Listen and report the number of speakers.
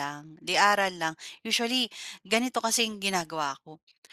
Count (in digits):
1